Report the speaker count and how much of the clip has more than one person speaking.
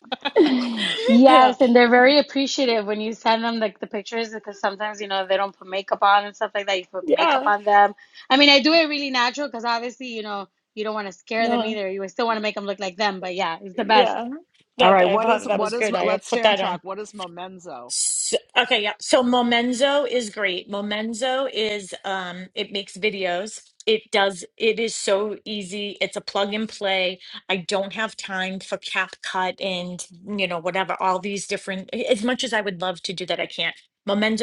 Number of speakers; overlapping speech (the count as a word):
three, about 10%